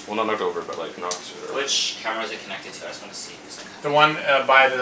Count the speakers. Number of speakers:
3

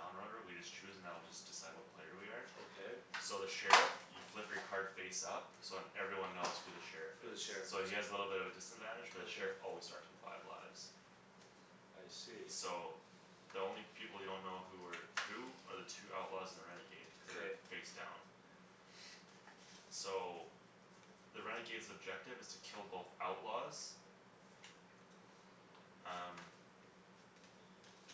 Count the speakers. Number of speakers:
2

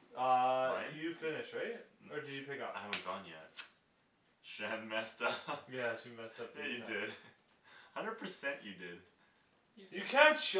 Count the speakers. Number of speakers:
2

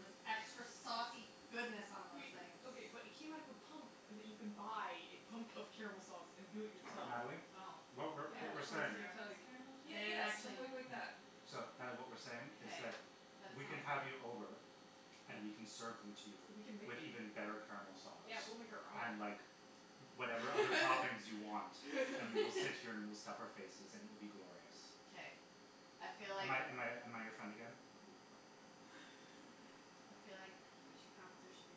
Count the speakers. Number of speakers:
4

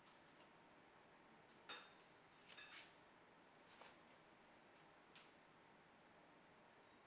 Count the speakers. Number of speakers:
0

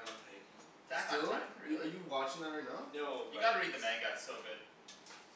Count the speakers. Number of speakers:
3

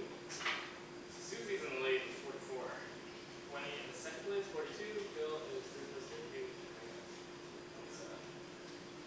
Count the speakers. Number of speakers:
1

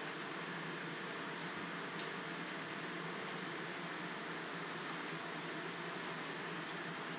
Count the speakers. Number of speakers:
0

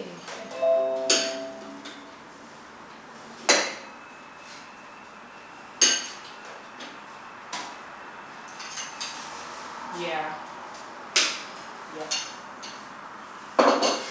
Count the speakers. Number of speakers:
1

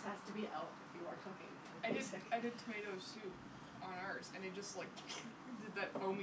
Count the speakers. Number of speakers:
2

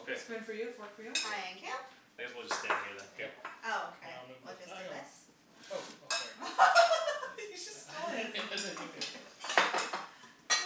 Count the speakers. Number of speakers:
4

